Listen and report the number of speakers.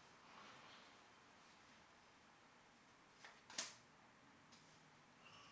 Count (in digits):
0